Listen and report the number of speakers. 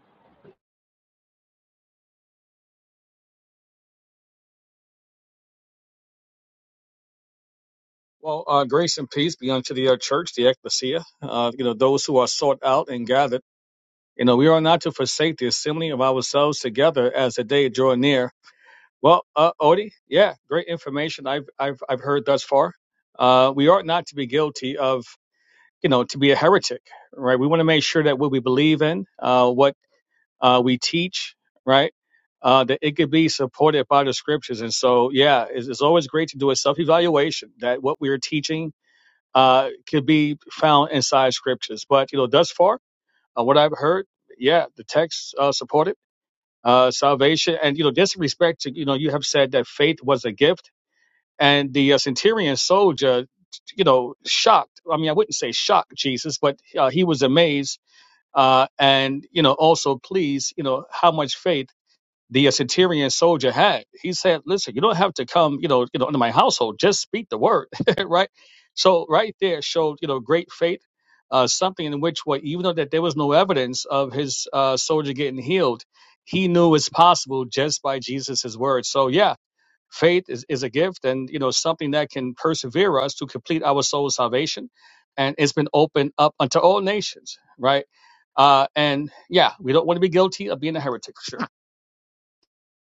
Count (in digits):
1